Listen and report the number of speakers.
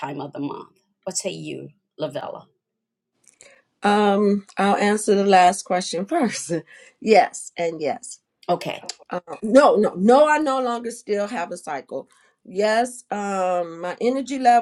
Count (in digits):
2